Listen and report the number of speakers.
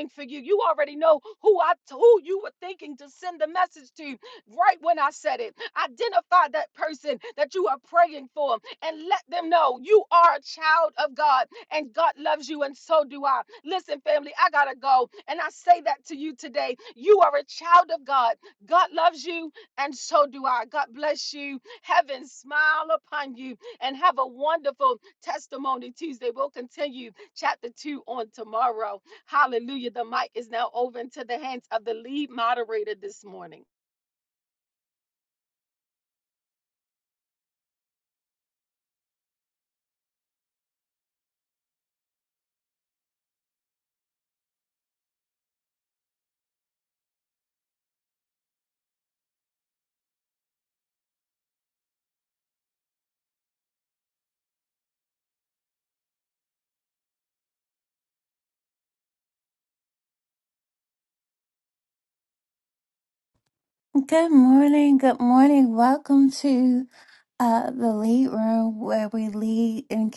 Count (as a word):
two